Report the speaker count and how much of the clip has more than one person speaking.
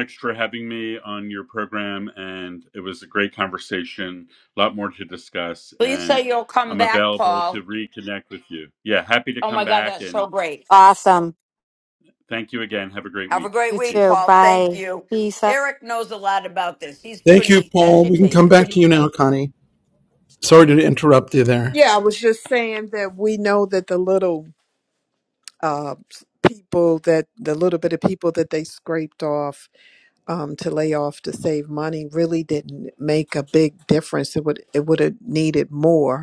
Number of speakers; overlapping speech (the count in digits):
5, about 13%